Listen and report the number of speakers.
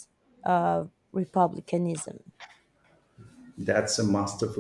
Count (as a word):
two